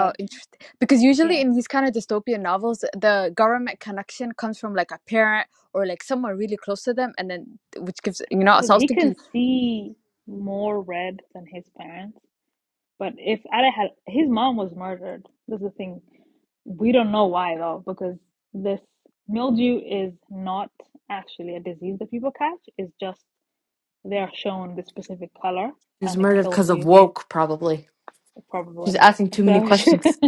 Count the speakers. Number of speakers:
3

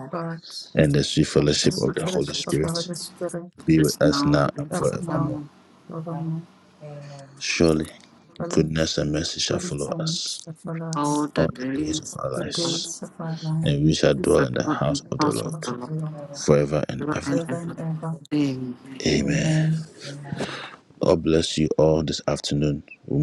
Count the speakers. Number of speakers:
4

